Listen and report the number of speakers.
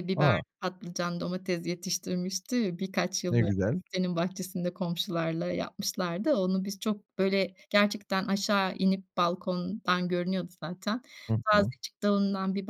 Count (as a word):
two